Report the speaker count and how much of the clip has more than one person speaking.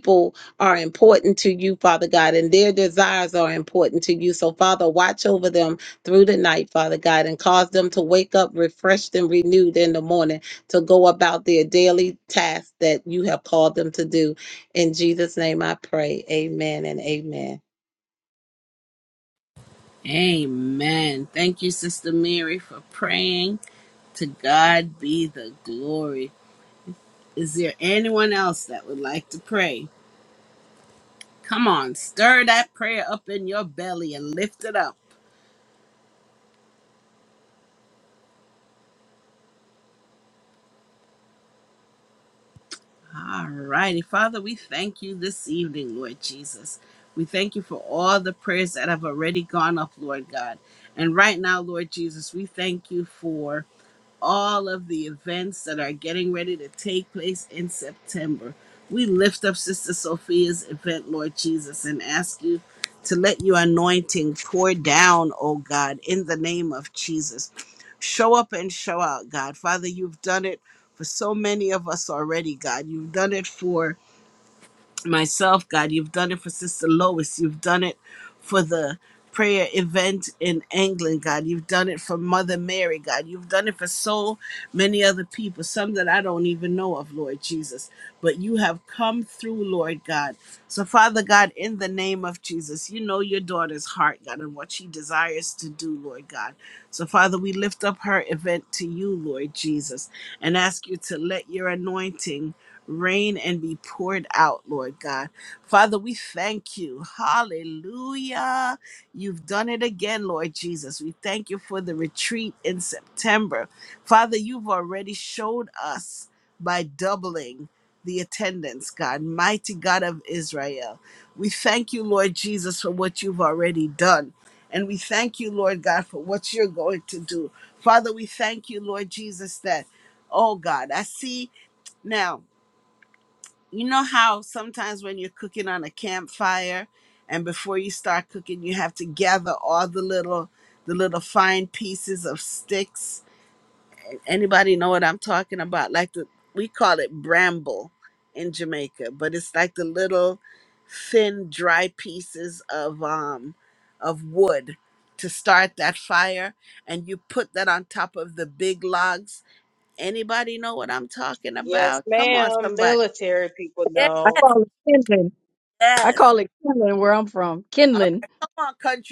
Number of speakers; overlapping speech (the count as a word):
four, about 1%